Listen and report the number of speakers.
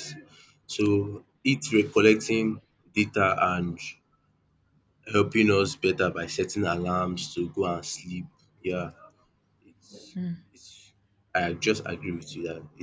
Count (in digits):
1